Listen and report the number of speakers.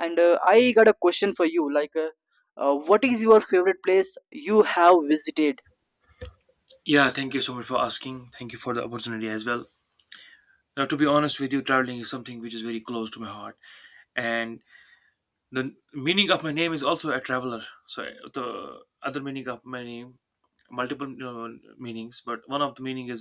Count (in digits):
2